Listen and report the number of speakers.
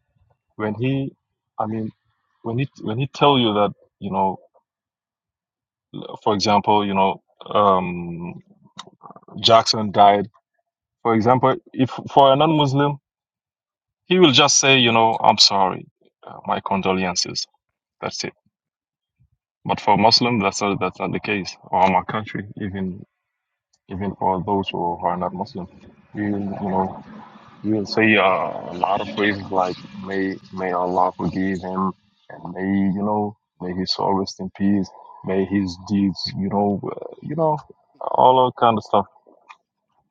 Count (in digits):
1